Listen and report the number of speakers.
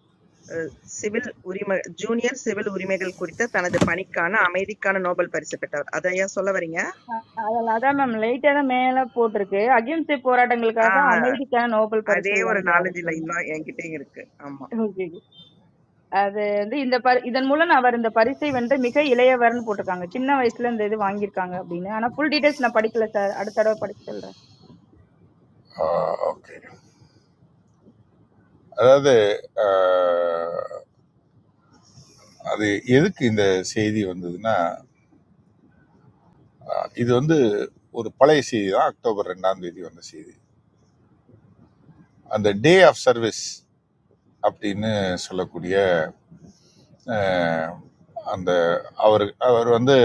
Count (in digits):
3